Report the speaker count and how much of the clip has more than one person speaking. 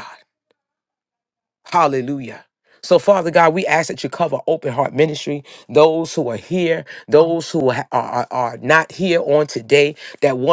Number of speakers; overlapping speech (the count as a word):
one, no overlap